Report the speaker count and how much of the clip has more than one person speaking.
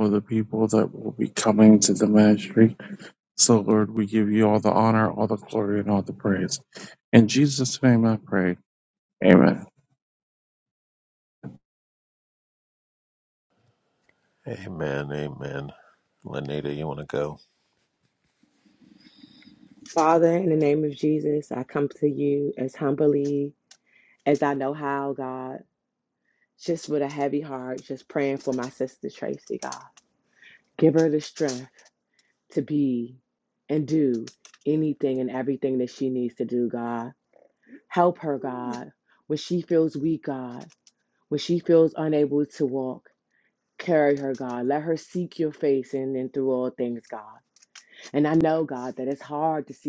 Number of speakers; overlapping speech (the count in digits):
3, no overlap